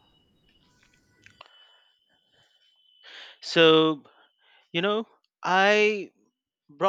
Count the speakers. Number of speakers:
one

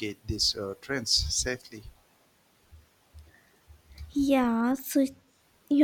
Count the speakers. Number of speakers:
two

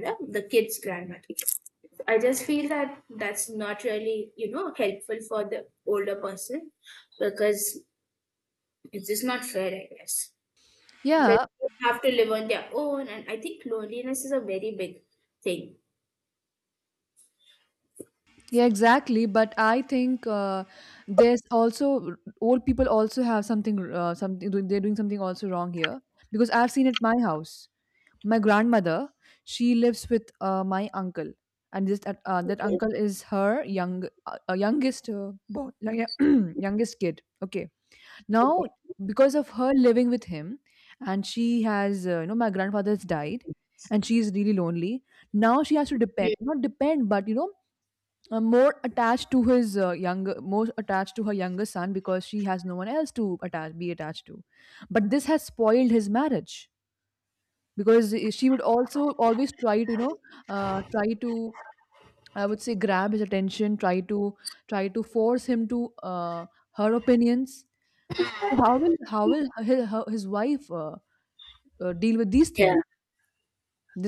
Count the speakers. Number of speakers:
two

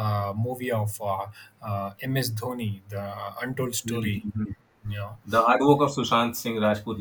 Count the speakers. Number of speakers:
two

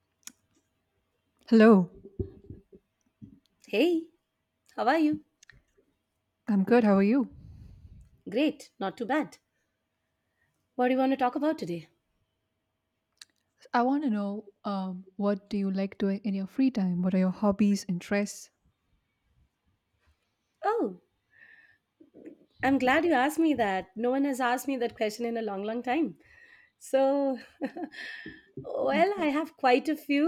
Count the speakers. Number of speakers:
two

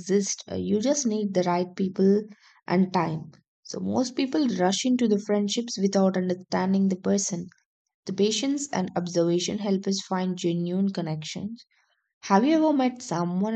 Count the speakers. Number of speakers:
one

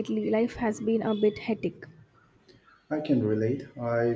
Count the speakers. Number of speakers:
two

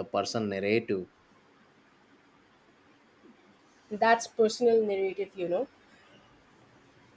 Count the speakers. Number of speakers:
two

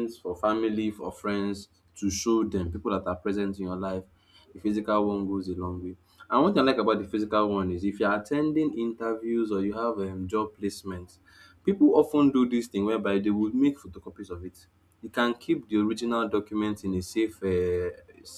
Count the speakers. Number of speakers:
one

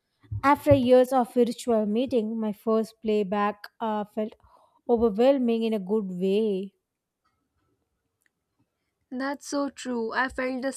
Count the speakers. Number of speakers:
two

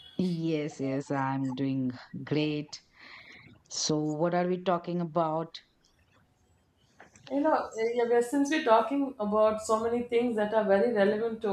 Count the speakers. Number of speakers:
two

